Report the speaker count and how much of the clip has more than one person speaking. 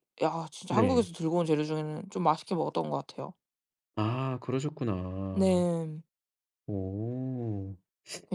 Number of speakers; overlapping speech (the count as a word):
two, about 5%